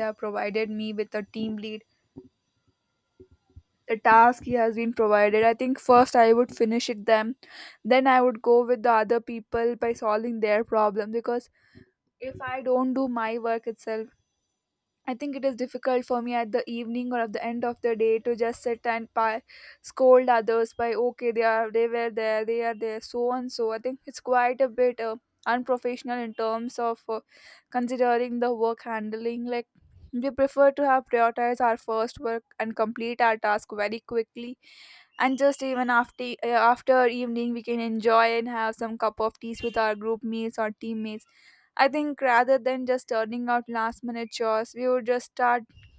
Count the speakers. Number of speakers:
1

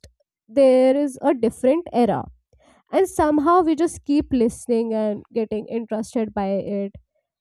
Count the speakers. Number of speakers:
1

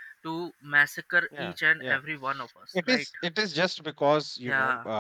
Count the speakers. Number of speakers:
2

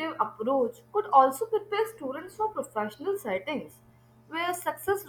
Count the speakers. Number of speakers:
1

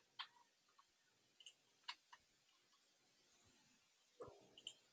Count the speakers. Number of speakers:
0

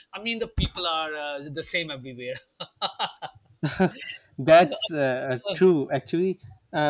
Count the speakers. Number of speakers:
2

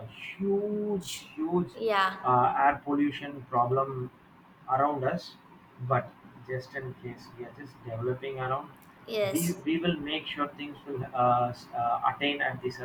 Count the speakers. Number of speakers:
2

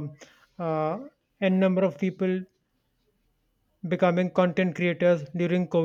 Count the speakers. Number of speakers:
1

